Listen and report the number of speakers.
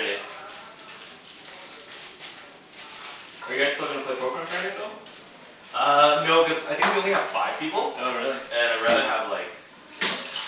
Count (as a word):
two